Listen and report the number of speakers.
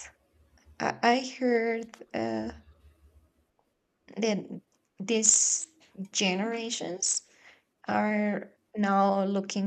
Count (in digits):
1